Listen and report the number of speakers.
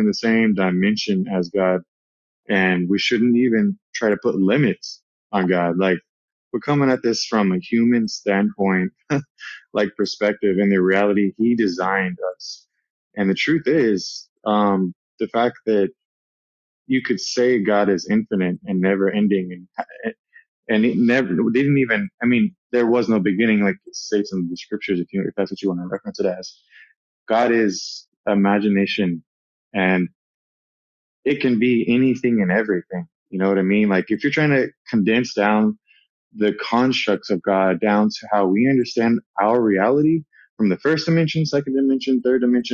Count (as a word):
one